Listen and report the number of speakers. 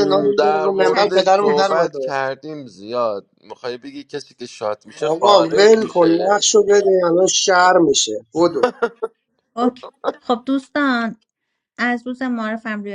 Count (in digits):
3